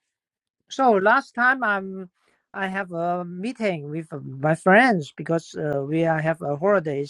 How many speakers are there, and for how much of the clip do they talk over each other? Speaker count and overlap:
1, no overlap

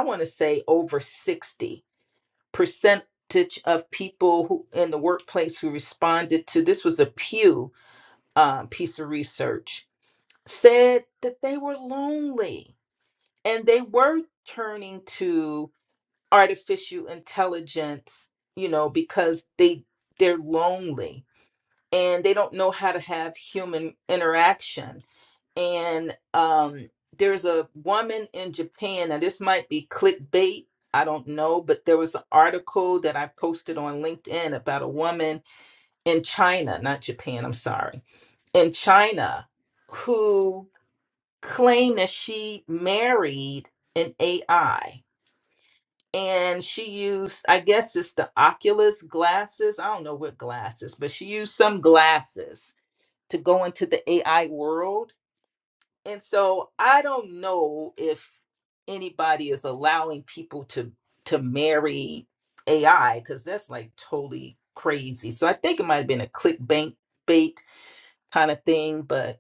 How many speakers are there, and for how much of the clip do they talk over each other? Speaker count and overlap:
1, no overlap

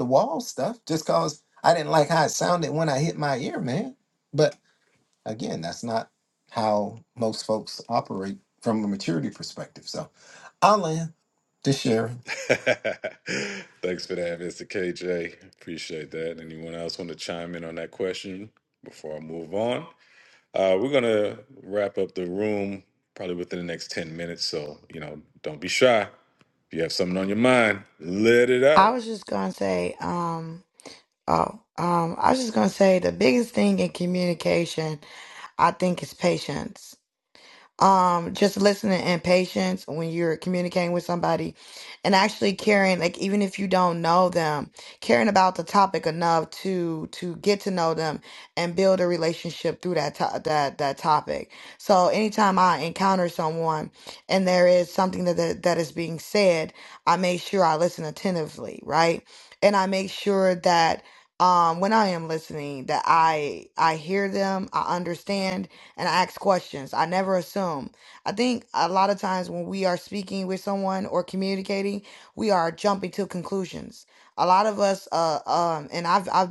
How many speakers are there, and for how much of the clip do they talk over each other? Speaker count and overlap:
3, under 1%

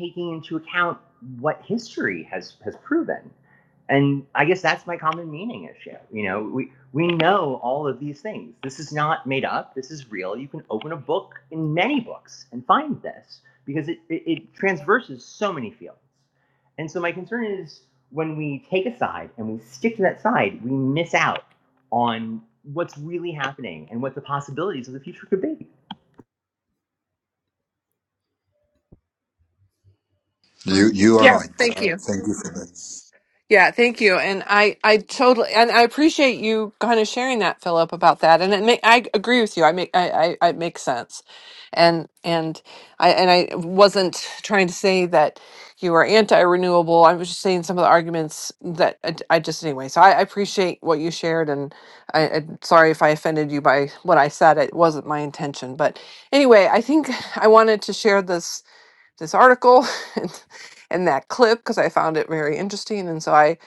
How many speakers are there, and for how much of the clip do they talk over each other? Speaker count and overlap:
3, about 1%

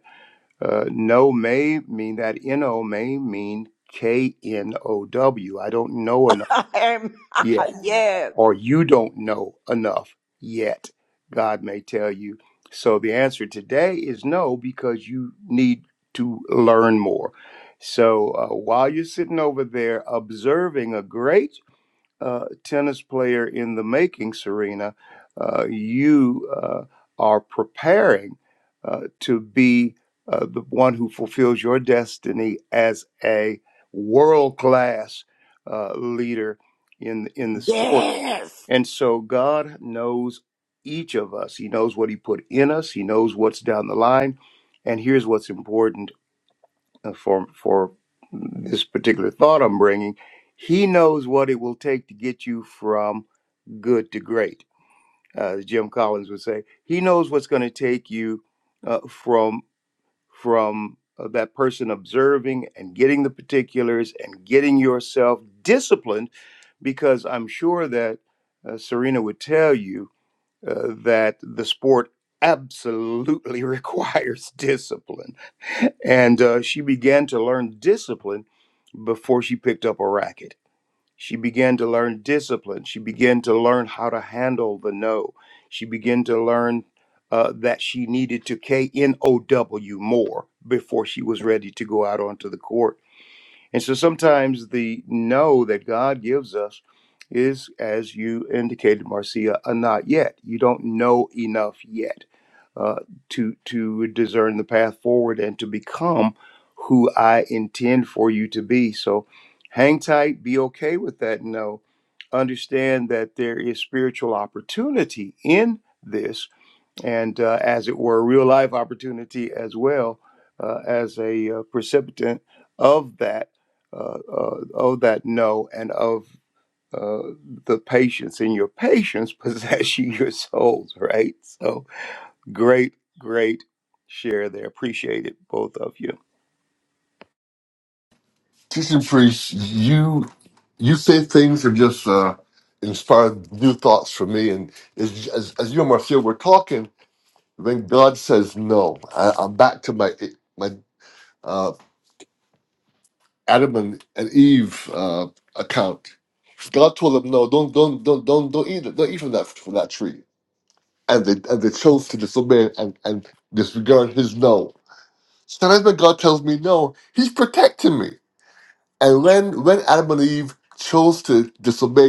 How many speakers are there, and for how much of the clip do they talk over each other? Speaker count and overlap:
3, under 1%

